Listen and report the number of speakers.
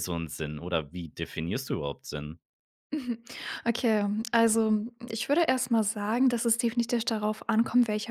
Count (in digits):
2